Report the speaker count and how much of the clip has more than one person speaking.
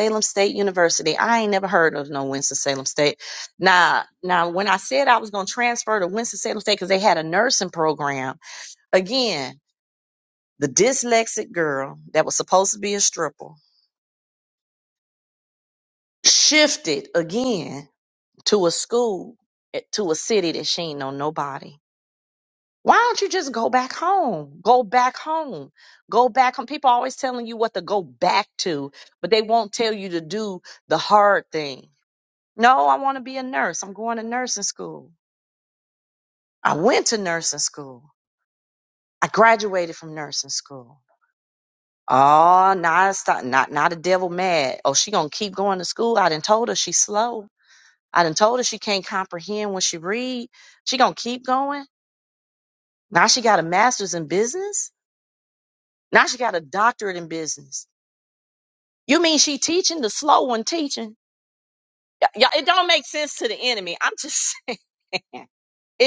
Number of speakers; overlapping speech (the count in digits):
1, no overlap